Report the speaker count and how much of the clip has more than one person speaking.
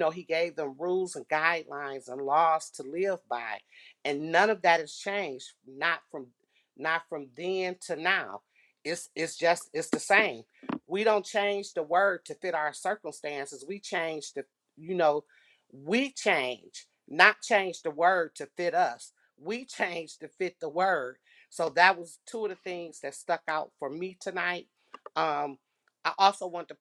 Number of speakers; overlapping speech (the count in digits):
1, no overlap